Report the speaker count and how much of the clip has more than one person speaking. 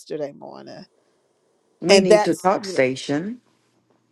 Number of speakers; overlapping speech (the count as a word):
two, about 22%